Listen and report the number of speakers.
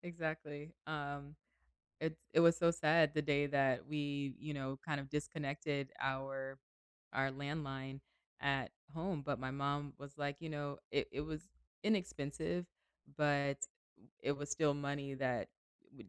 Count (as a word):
one